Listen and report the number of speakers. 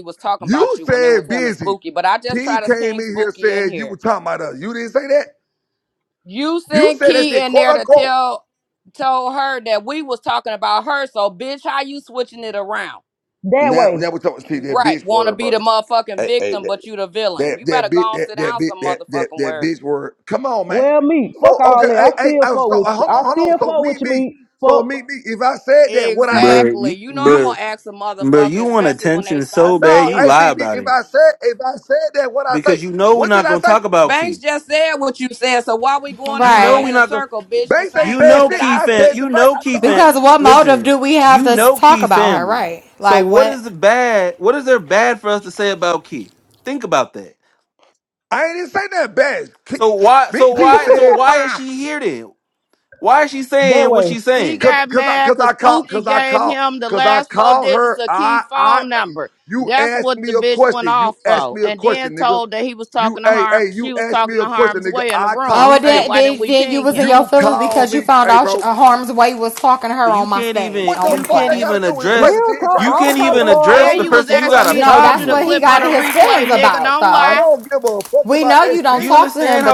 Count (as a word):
five